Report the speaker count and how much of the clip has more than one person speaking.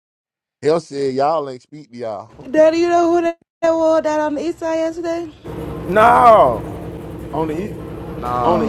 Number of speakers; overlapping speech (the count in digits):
3, about 3%